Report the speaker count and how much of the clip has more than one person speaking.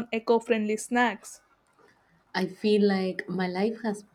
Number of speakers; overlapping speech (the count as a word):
two, no overlap